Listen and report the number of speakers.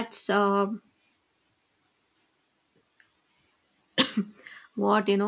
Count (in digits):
1